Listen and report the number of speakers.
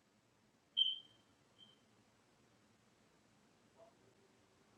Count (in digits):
0